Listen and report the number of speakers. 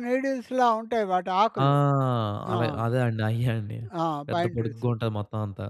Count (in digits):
2